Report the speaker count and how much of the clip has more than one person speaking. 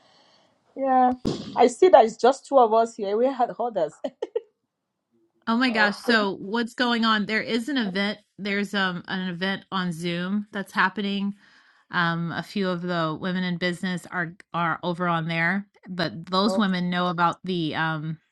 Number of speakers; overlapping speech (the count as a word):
two, about 4%